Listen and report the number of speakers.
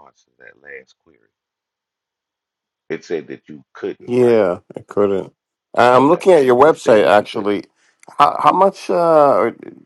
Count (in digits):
2